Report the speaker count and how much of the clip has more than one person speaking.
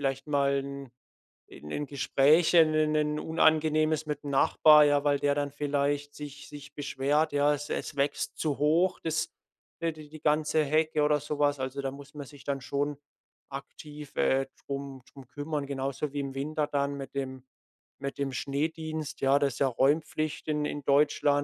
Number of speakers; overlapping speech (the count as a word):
one, no overlap